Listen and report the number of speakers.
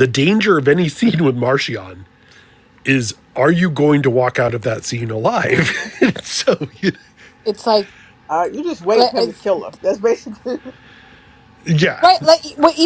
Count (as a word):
three